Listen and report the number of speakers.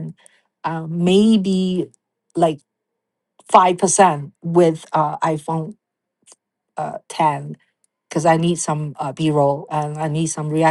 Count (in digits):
1